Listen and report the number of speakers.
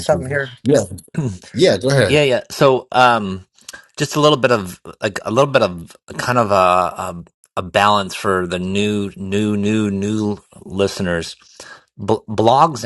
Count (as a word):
two